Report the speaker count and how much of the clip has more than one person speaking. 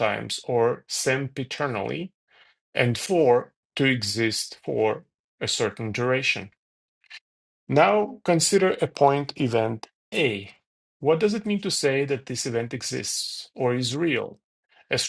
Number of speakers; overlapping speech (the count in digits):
1, no overlap